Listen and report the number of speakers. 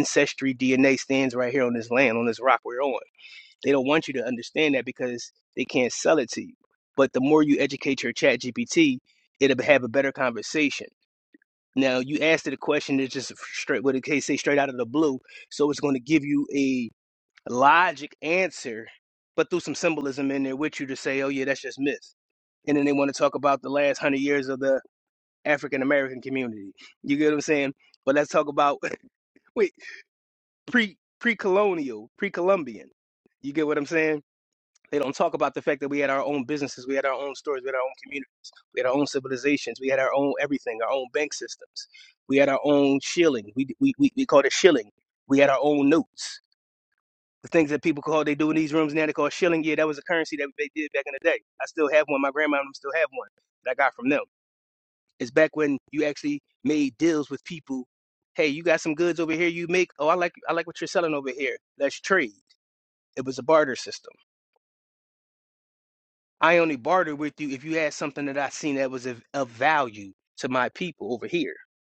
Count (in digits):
1